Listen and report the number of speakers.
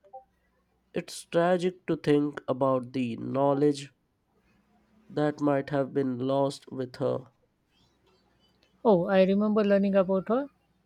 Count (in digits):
2